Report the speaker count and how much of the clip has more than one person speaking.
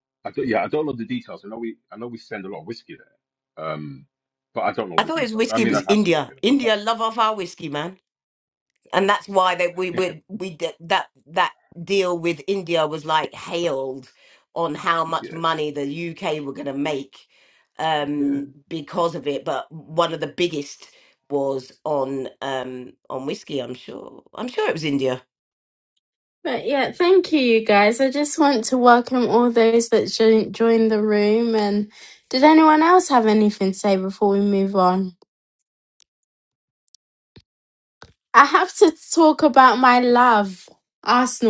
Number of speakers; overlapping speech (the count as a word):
three, about 5%